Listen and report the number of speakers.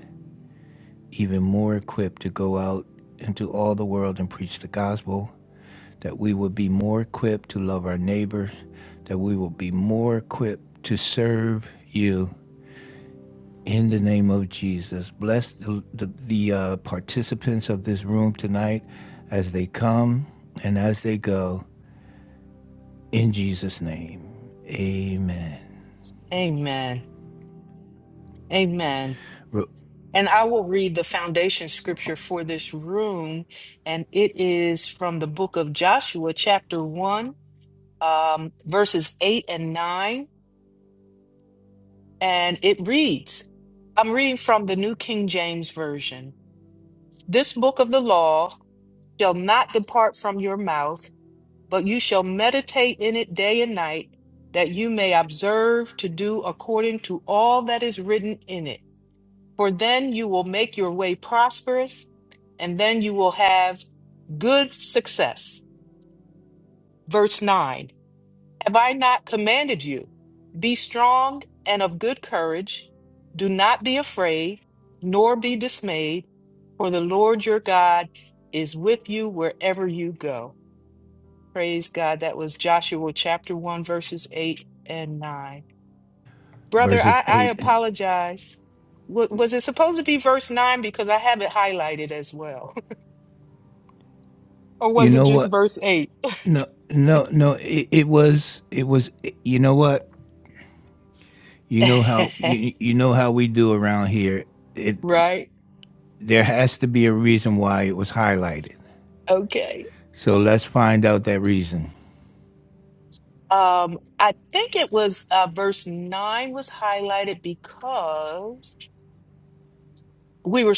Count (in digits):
2